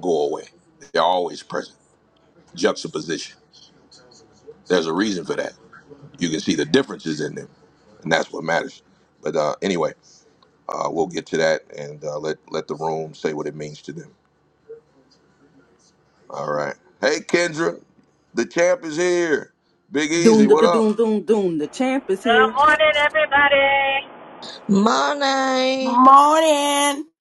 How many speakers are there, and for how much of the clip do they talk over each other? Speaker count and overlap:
five, about 4%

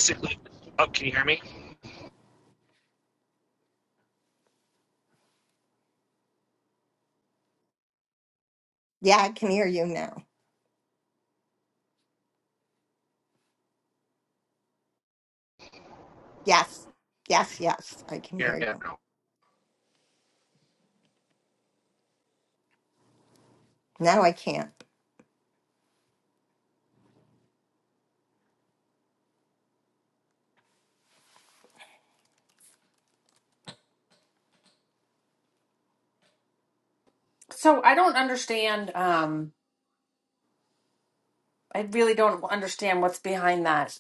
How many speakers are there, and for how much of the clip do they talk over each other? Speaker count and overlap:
three, about 1%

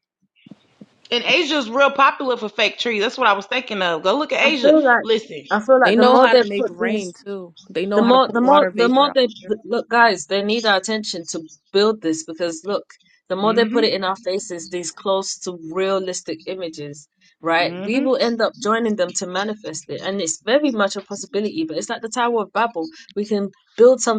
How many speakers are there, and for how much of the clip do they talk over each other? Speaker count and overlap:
three, about 16%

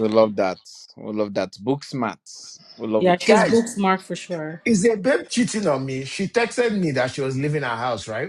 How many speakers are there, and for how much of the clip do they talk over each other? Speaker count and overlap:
three, about 6%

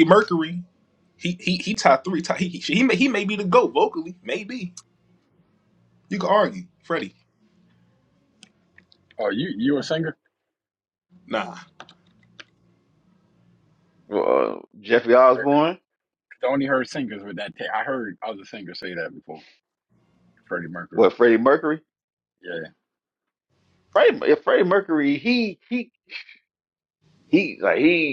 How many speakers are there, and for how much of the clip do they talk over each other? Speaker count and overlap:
three, about 1%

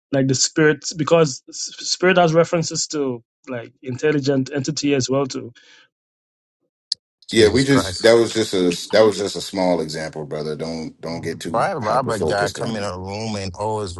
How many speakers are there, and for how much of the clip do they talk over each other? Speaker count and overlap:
three, about 15%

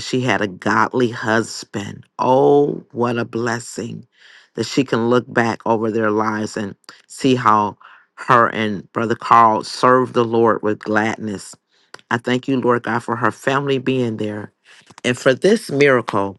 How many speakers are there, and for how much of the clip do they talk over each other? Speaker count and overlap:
one, no overlap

